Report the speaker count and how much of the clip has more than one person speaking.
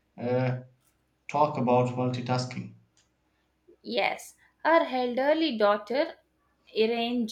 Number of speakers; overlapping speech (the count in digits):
2, no overlap